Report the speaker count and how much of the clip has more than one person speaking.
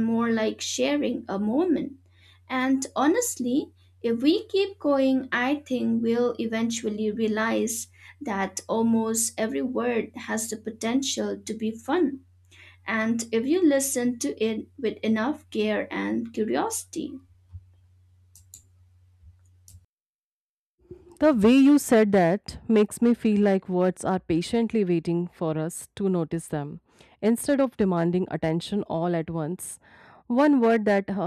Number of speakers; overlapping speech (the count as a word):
two, no overlap